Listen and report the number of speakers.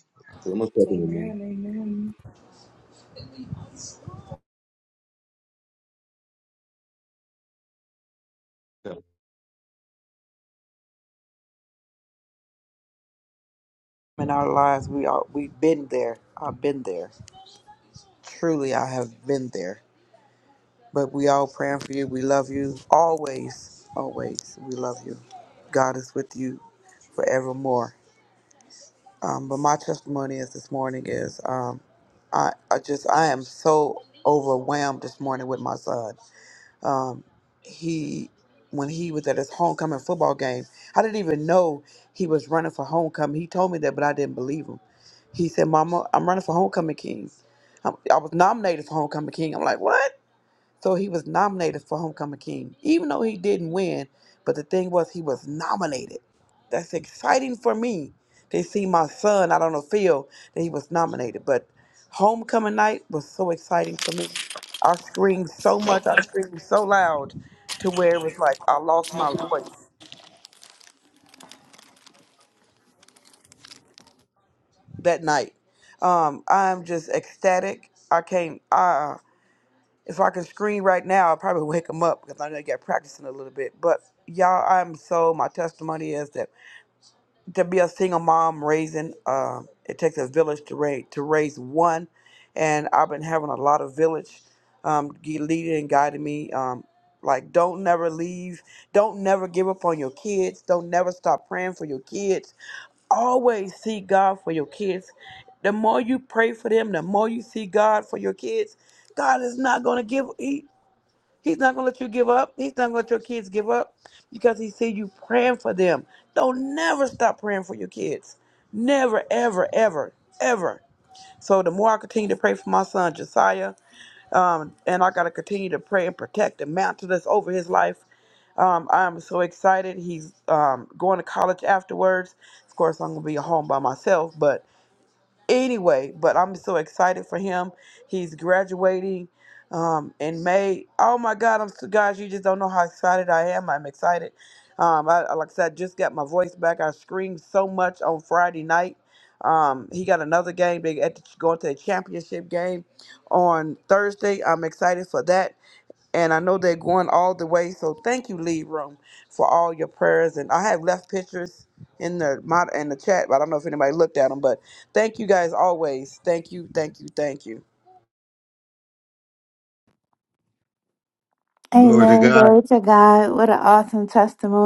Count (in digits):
4